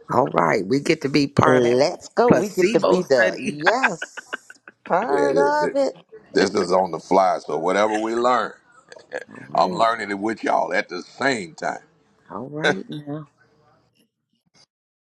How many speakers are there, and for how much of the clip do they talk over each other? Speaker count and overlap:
3, about 18%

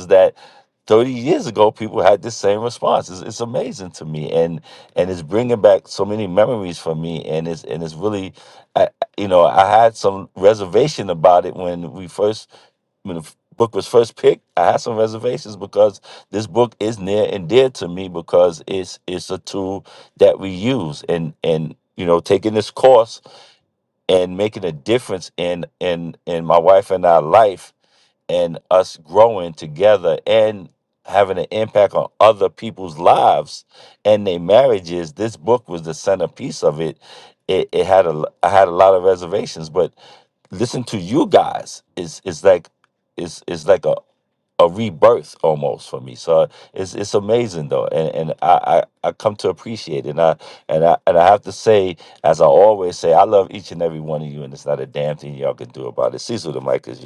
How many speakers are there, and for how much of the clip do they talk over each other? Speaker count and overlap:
1, no overlap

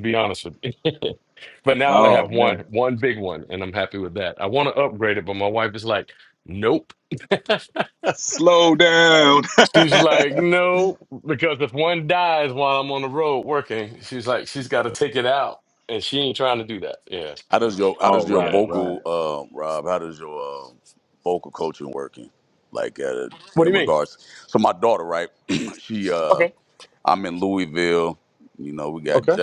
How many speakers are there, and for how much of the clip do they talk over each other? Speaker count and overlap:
3, about 9%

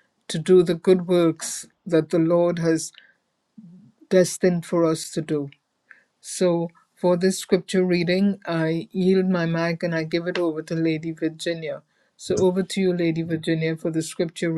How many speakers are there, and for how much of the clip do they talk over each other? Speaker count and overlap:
1, no overlap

